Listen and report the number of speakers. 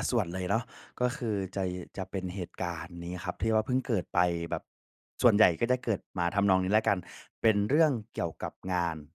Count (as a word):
one